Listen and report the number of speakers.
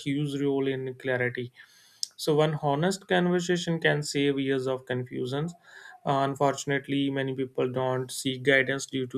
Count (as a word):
one